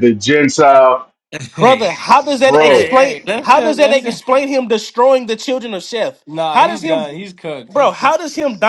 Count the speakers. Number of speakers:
three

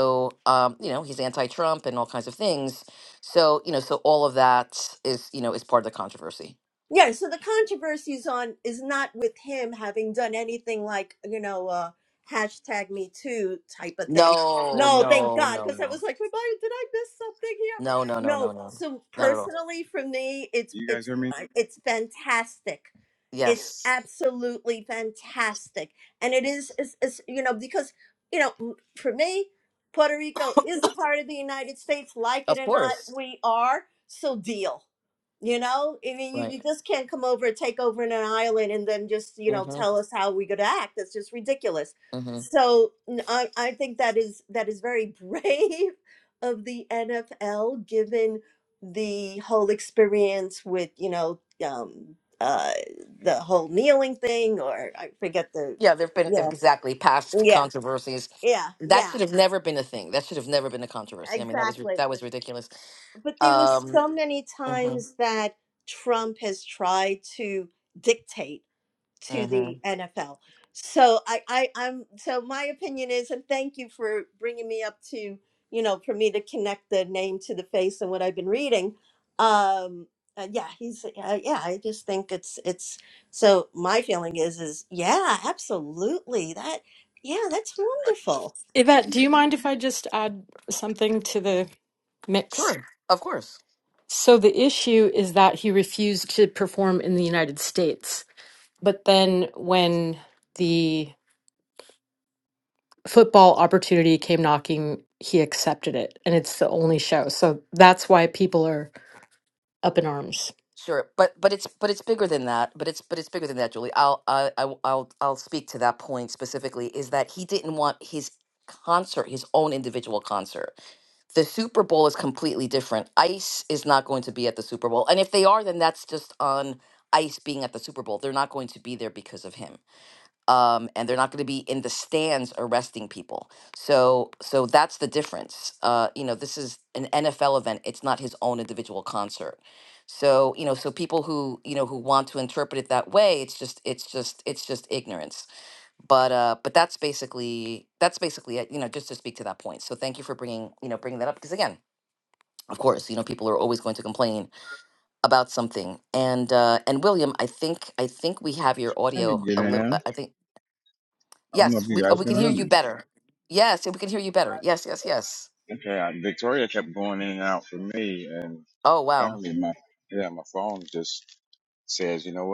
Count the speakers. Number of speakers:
four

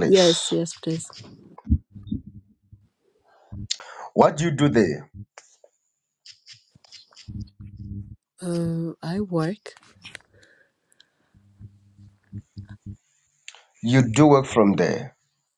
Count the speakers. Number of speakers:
two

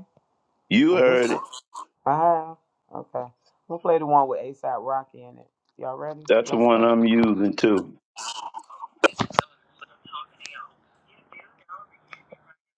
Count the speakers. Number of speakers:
two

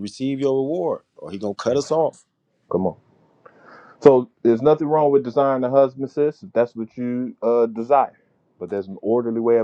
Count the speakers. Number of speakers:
two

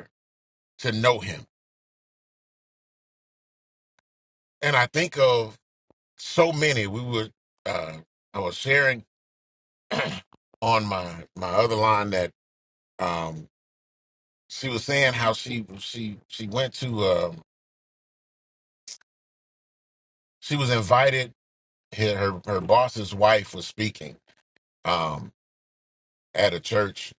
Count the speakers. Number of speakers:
one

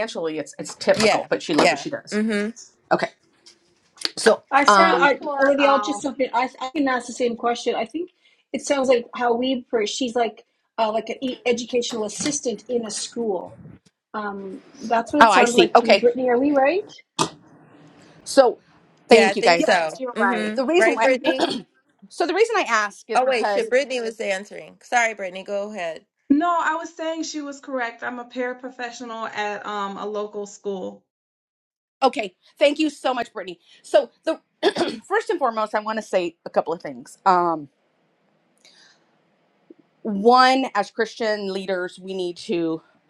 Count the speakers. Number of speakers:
four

